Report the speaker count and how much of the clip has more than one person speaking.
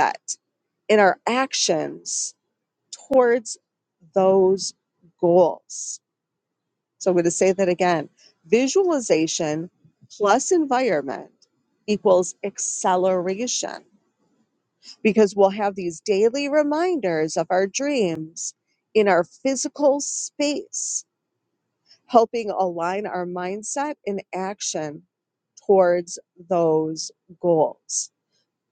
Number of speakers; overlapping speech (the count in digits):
1, no overlap